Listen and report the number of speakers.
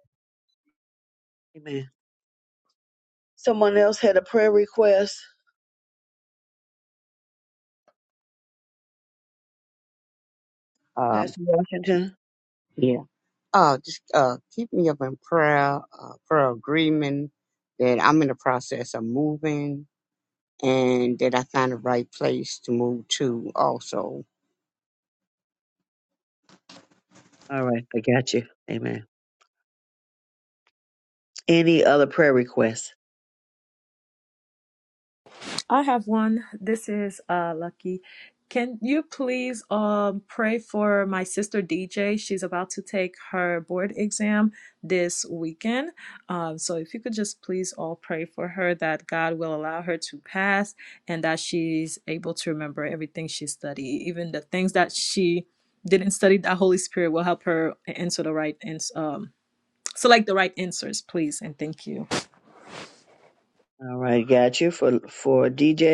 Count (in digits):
3